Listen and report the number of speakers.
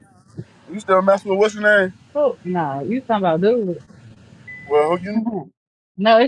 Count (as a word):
two